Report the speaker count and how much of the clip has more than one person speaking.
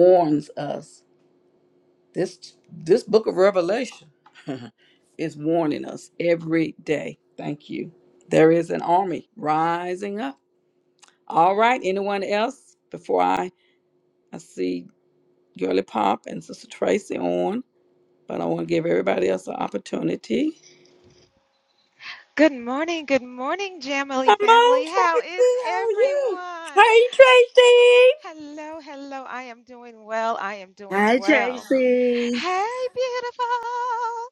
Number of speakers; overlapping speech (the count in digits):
4, about 8%